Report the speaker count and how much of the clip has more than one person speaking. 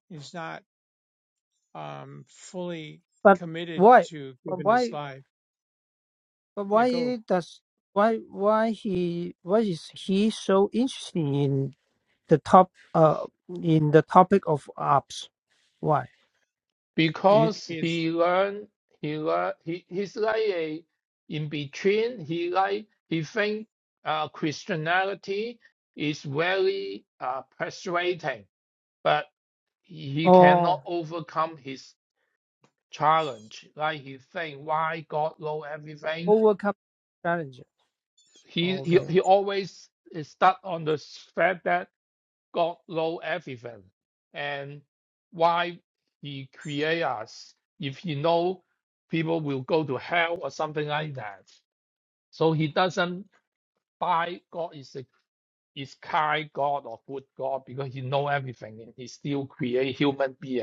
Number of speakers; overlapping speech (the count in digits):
3, about 5%